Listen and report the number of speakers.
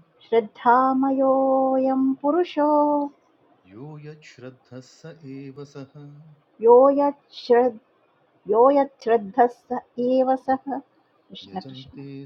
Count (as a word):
two